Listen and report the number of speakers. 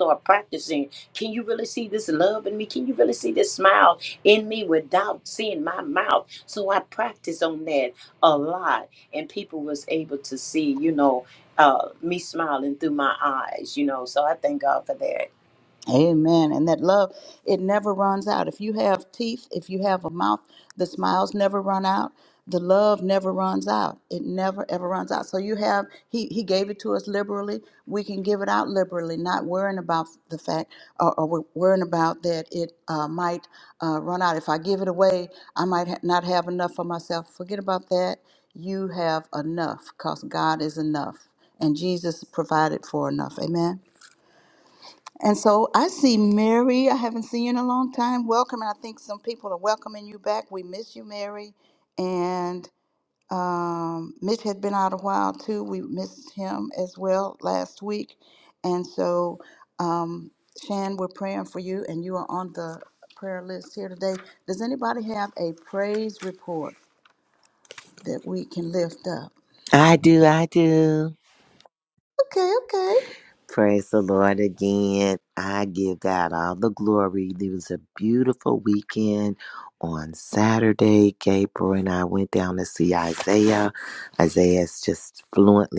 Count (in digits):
3